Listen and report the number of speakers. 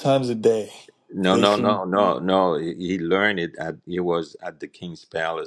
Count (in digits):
2